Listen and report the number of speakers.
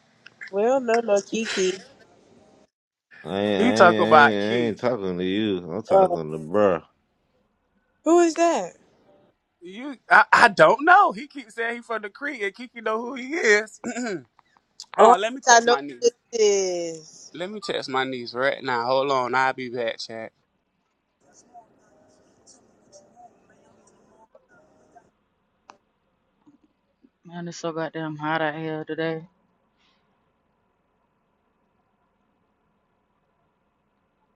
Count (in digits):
4